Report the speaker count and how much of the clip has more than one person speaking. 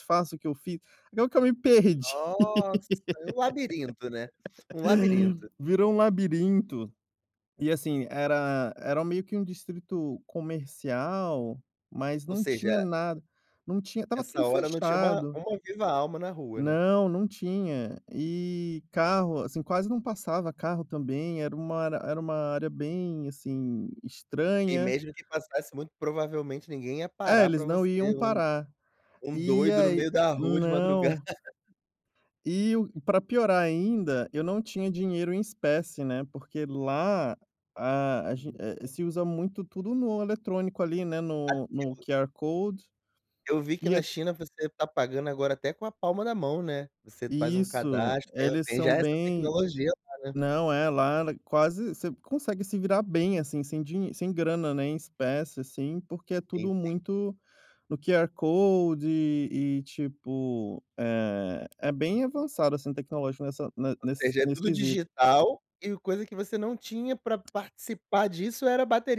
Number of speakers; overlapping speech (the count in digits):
2, about 12%